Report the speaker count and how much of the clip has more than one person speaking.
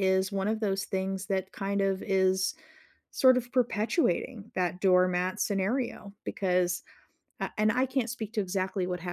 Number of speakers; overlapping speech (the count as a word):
one, no overlap